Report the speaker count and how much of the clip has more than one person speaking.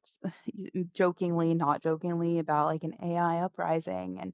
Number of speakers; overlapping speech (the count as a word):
one, no overlap